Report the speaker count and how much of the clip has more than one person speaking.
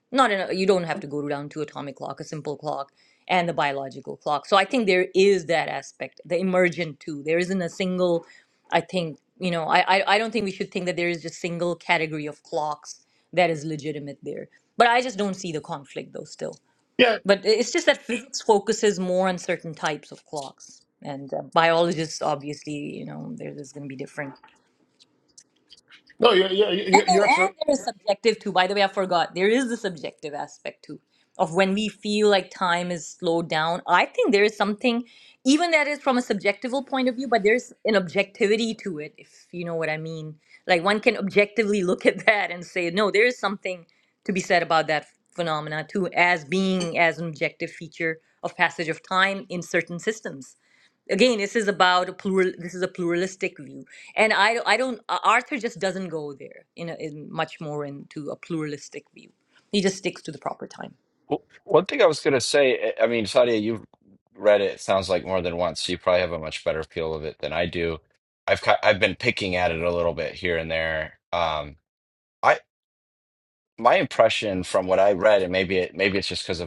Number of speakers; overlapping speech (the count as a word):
three, about 1%